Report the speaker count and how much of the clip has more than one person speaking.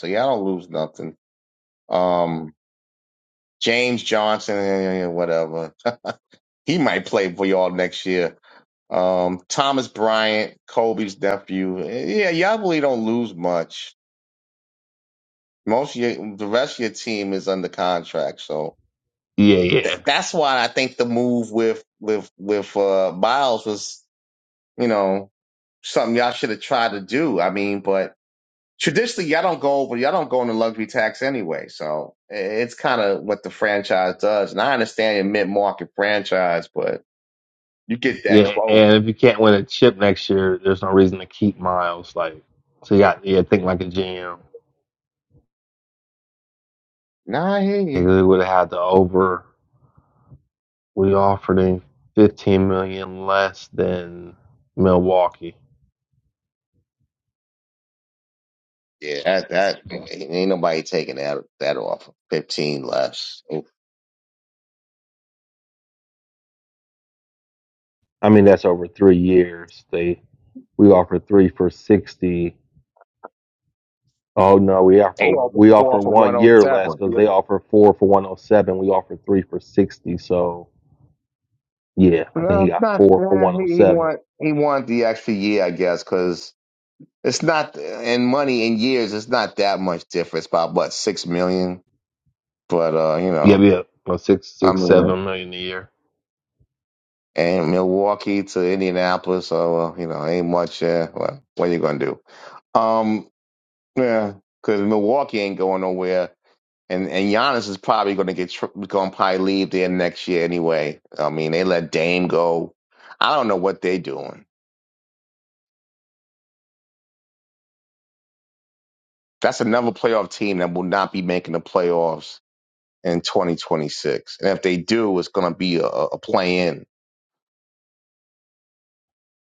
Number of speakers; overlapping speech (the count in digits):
2, about 4%